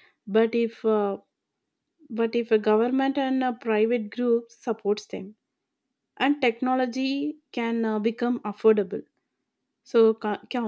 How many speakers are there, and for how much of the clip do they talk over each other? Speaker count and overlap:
1, no overlap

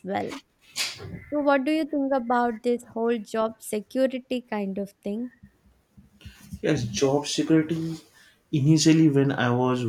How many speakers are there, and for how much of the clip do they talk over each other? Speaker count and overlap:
2, no overlap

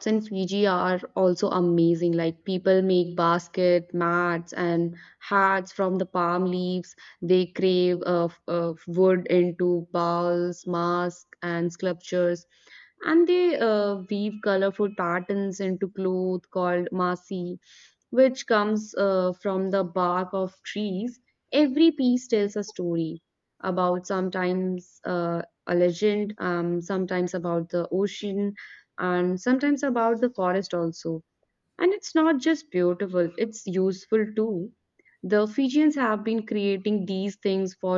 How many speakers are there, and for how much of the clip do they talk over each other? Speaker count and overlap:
1, no overlap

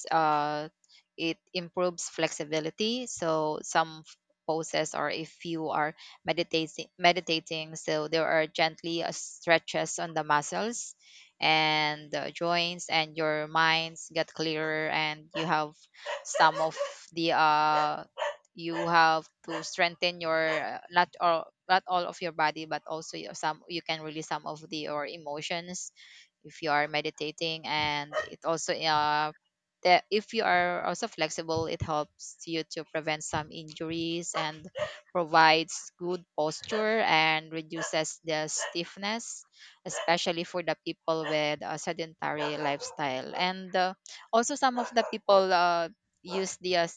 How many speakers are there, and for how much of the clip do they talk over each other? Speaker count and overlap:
1, no overlap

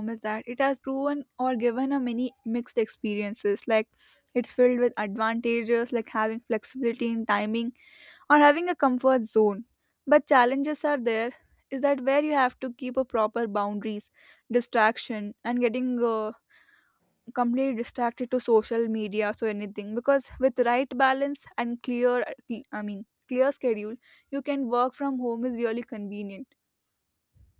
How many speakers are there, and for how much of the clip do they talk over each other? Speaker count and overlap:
1, no overlap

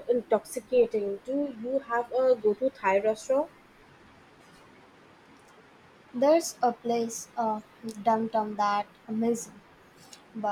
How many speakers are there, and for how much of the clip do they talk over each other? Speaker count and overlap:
2, no overlap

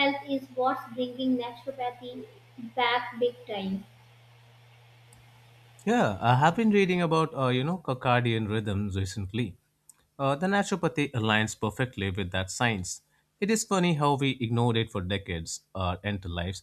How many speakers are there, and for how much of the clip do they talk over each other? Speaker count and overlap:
2, no overlap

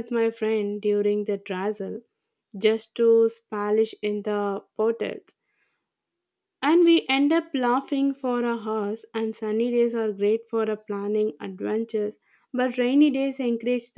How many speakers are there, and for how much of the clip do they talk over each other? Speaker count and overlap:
1, no overlap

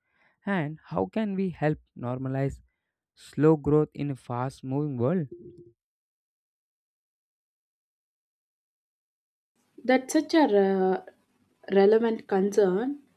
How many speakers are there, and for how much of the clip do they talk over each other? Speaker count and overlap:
2, no overlap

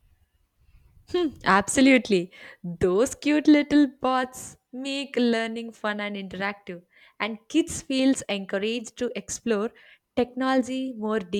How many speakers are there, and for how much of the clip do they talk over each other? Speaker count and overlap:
1, no overlap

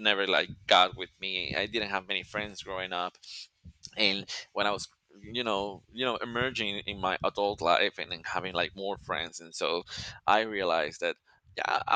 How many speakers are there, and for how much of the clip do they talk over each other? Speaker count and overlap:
1, no overlap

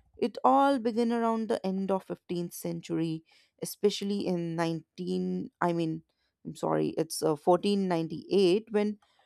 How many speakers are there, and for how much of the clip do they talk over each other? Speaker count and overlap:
1, no overlap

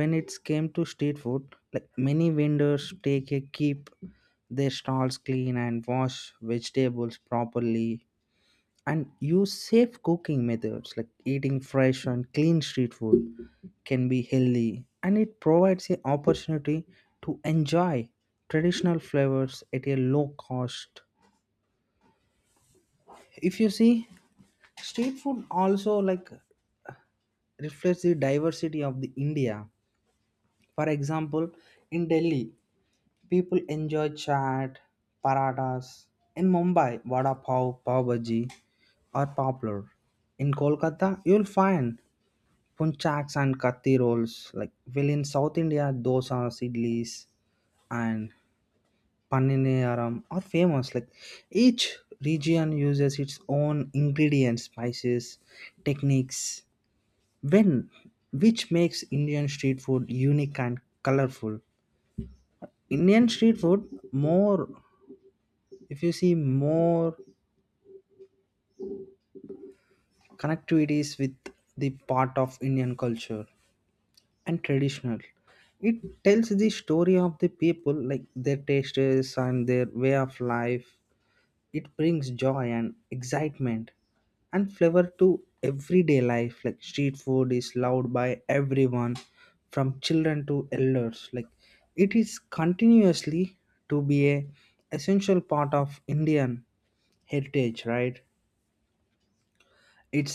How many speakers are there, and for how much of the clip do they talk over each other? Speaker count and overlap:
1, no overlap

